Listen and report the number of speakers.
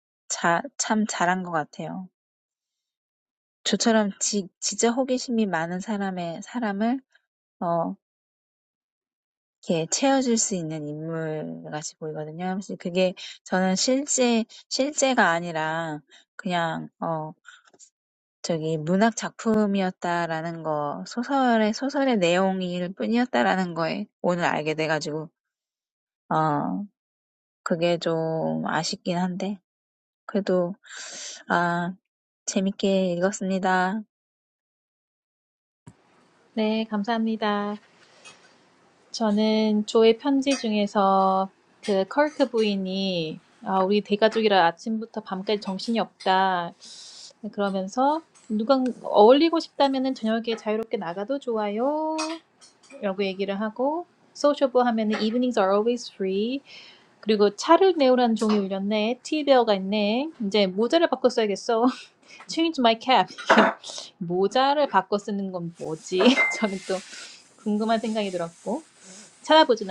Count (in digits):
2